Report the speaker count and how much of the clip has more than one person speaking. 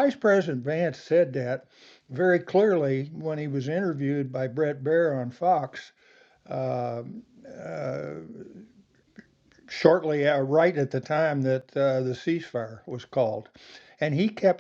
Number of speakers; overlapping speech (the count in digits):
1, no overlap